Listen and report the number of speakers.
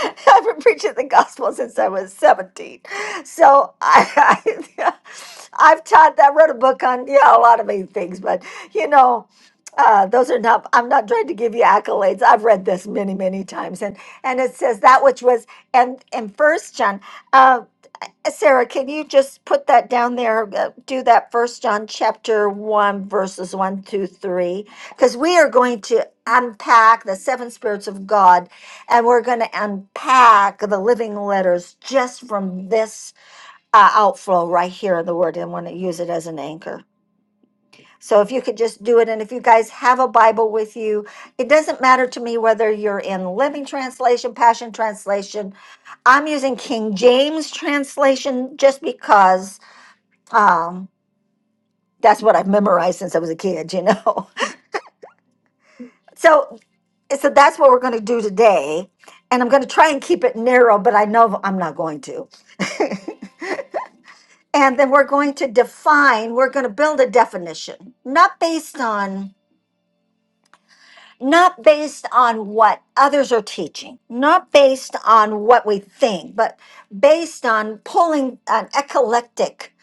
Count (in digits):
1